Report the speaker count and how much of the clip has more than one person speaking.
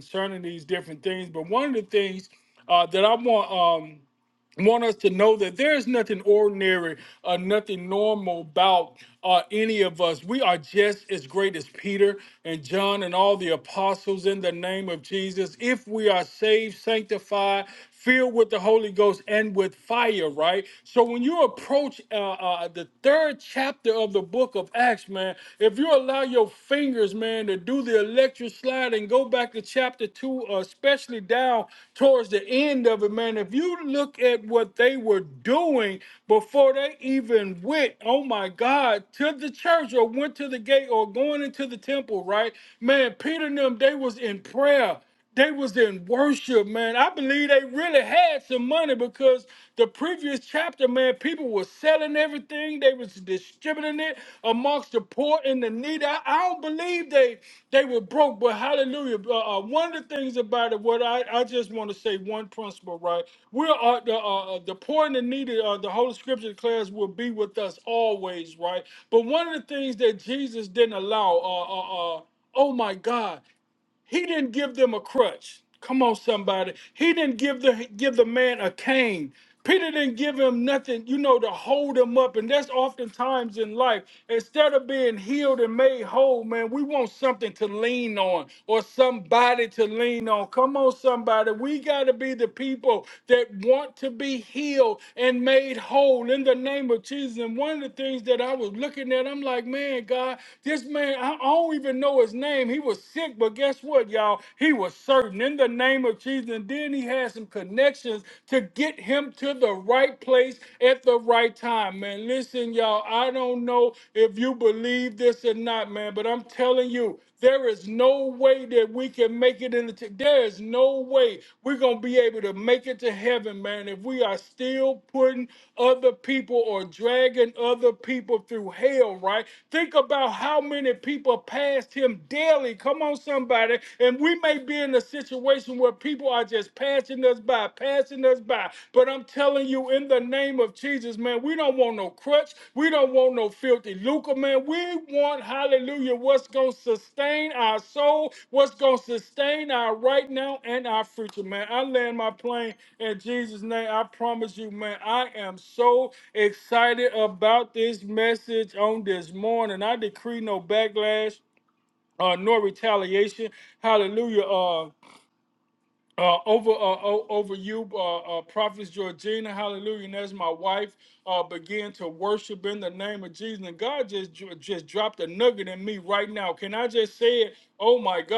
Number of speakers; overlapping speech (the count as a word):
one, no overlap